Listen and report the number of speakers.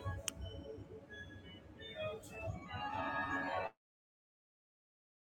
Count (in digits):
0